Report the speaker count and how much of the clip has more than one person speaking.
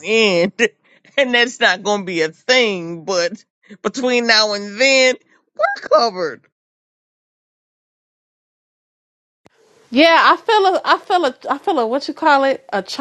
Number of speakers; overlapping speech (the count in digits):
2, no overlap